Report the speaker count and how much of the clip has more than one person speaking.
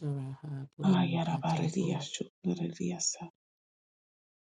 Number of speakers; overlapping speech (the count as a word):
two, about 25%